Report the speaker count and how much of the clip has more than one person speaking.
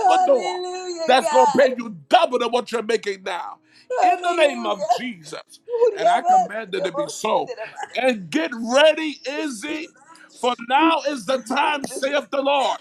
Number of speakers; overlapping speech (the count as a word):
two, about 36%